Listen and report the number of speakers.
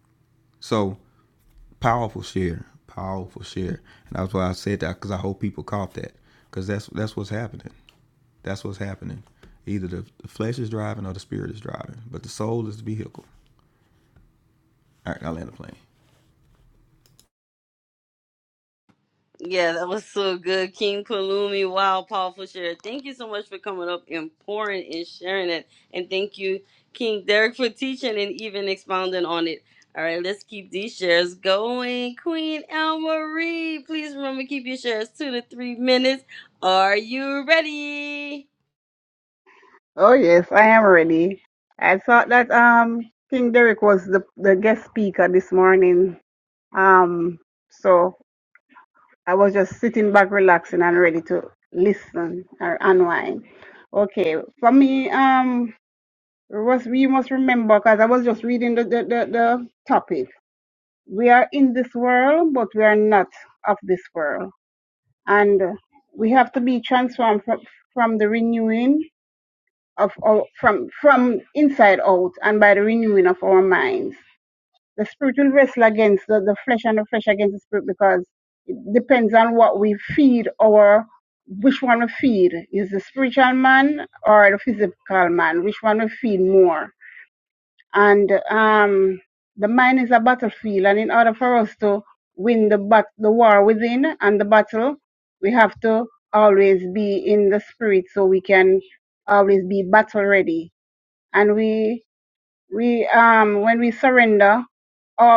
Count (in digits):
3